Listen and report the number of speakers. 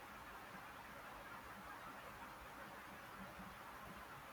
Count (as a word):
zero